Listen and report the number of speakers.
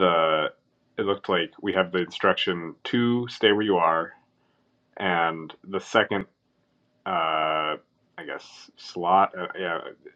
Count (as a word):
one